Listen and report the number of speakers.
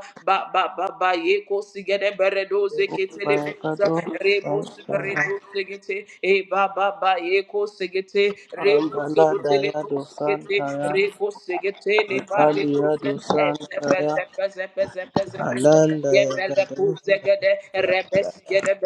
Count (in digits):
2